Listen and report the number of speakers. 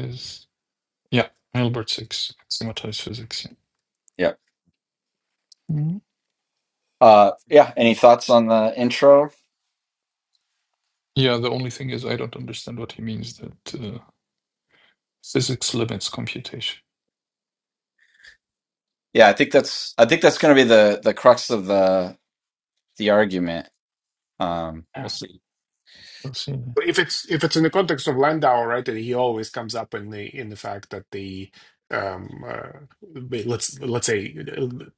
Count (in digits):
3